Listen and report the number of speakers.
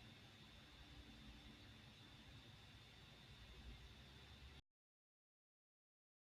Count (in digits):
0